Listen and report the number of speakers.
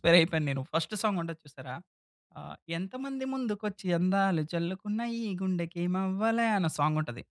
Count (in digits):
1